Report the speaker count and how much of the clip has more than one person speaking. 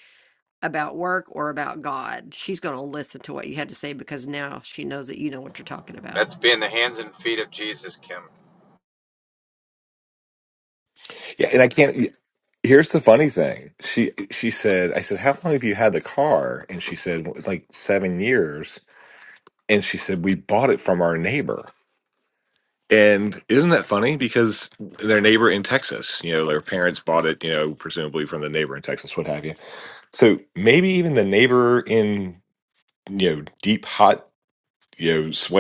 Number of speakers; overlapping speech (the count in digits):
3, under 1%